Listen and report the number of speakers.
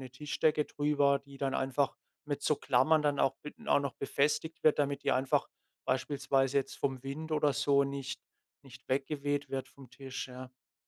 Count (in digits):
1